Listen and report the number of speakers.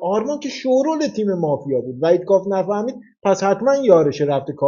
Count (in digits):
1